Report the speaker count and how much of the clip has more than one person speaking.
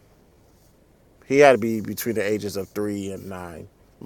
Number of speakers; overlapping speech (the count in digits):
1, no overlap